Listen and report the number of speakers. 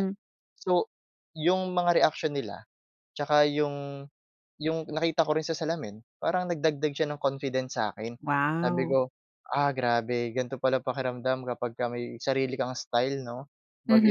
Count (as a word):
two